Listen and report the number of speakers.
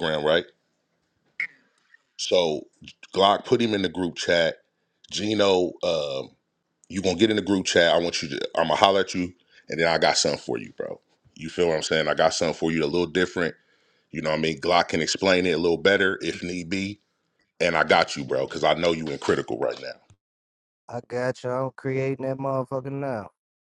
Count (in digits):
2